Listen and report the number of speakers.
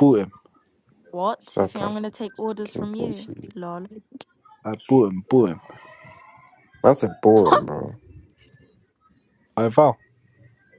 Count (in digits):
3